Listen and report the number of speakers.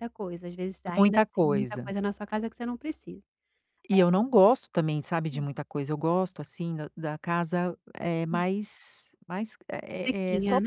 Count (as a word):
two